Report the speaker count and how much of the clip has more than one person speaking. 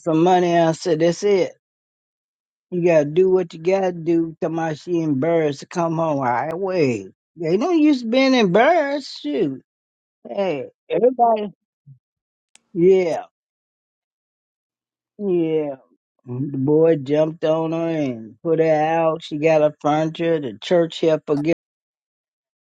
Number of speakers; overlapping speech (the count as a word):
one, no overlap